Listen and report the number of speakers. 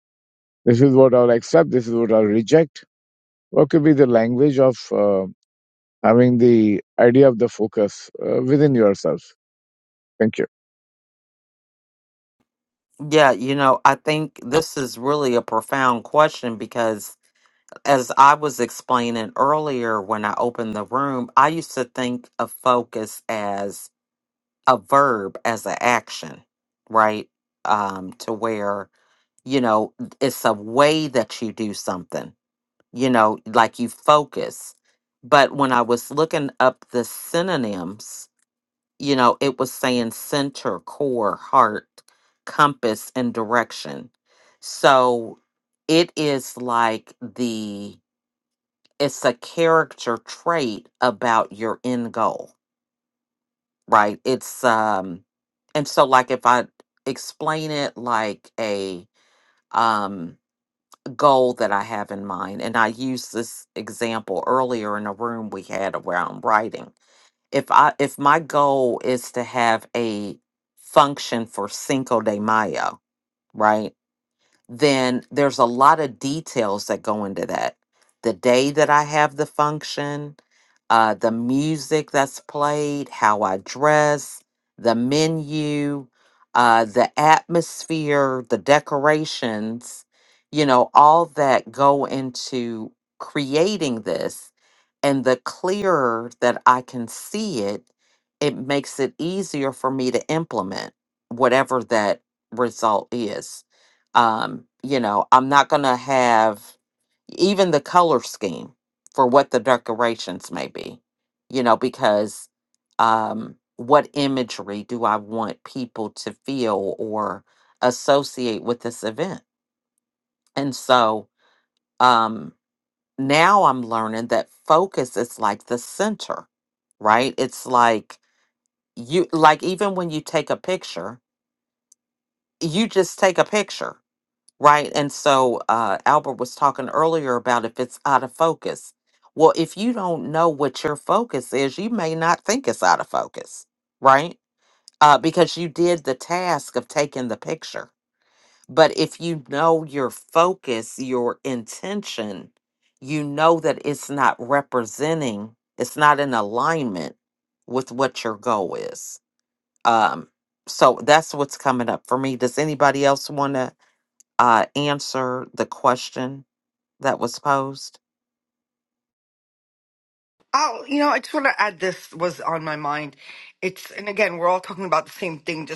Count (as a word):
three